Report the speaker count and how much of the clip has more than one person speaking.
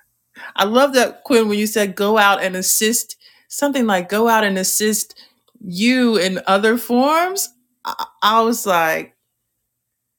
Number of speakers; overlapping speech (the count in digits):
1, no overlap